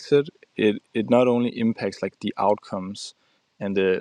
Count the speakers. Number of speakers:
1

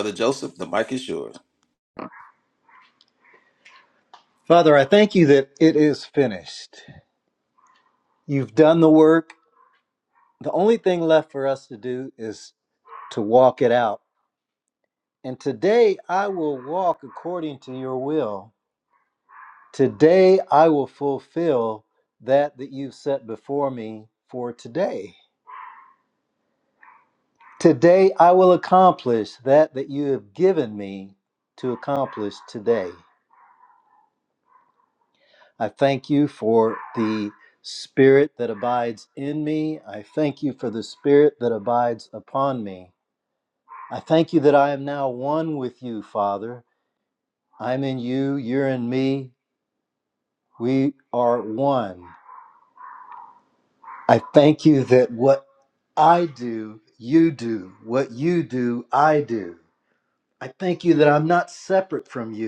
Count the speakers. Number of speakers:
2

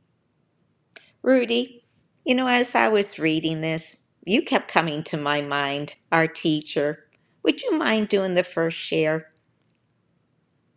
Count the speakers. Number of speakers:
1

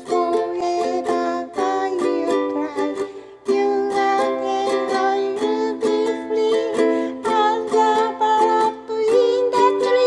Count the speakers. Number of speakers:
1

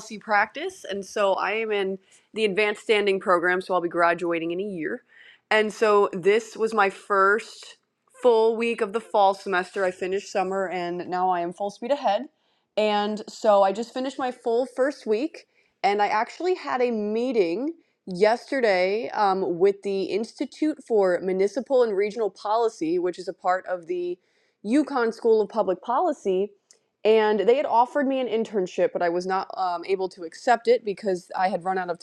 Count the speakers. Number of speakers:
1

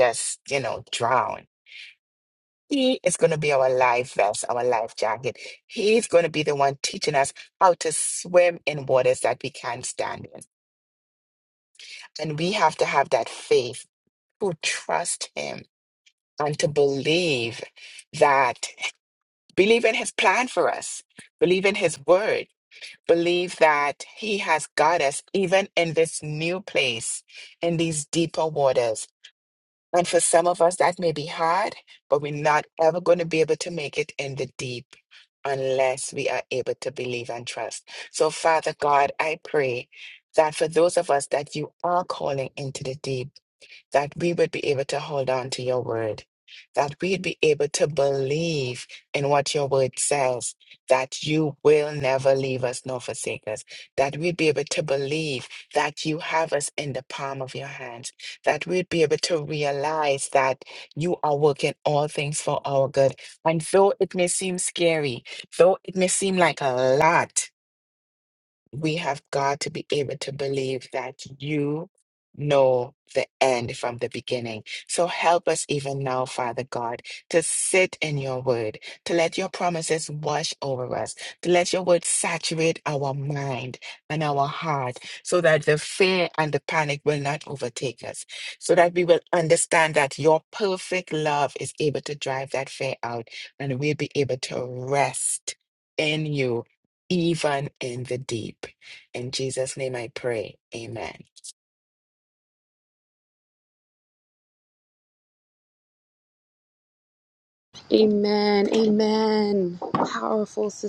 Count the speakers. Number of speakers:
2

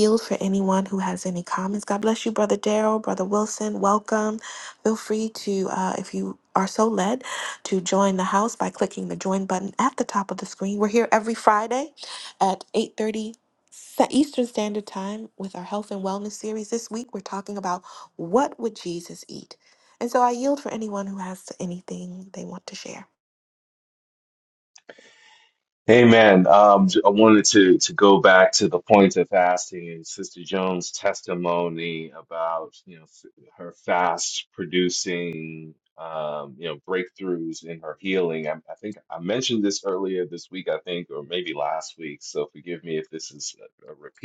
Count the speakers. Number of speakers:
2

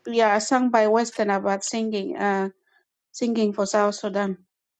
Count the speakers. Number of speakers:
1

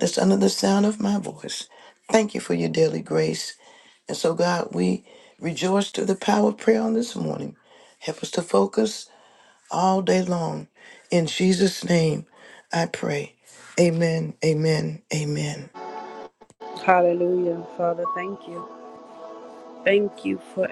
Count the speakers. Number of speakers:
2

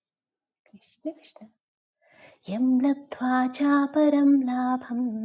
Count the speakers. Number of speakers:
1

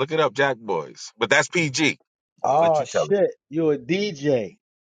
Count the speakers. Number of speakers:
2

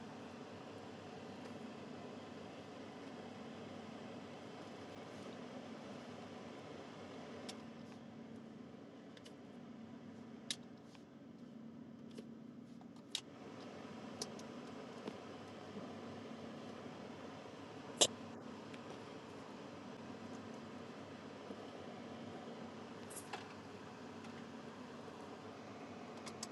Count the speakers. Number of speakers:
0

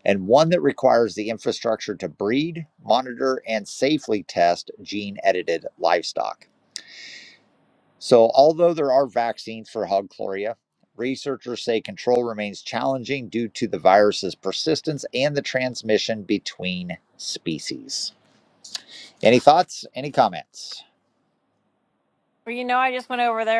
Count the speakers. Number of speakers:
2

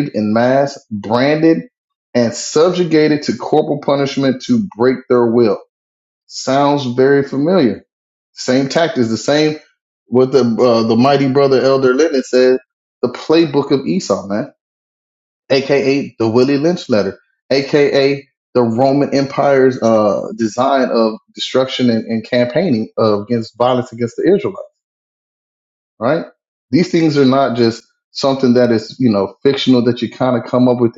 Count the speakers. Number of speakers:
1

